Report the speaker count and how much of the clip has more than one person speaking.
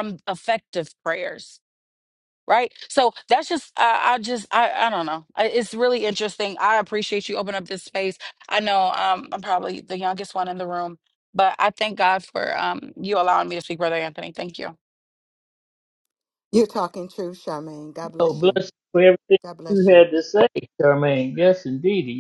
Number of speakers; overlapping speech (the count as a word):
three, about 3%